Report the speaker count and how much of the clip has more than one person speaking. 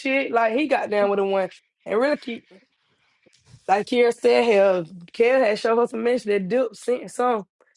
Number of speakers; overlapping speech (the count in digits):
1, no overlap